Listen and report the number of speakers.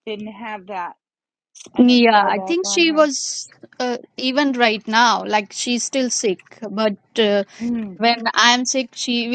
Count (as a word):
two